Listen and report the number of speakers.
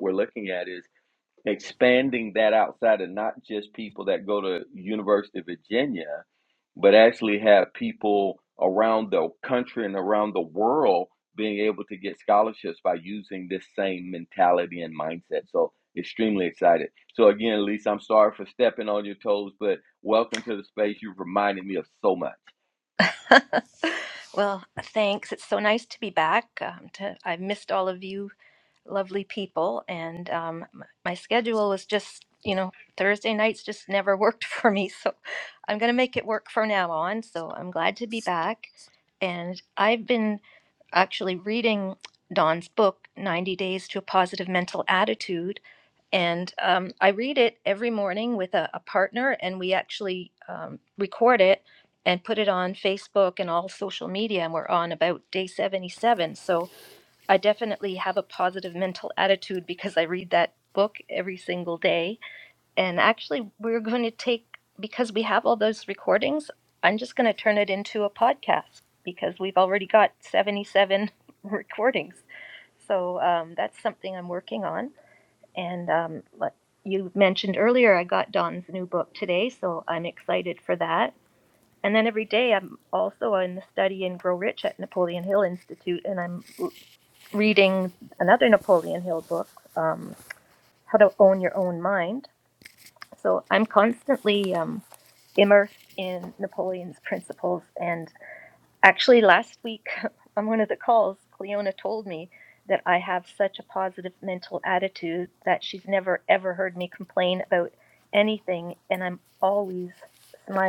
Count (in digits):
2